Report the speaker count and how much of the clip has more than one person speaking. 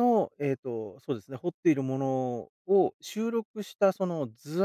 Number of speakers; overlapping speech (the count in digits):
1, no overlap